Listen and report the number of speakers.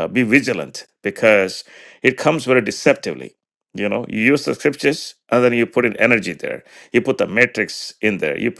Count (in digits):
1